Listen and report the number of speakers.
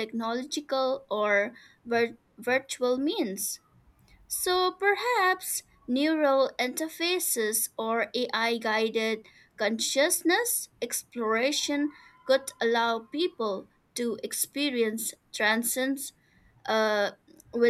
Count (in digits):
1